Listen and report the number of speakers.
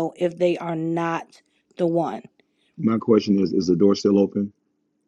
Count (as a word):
two